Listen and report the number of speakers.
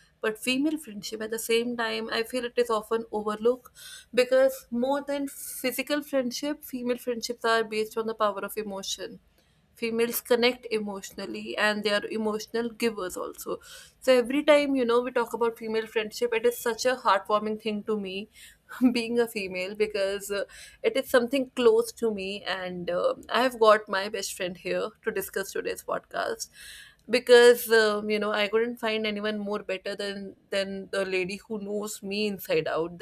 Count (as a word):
one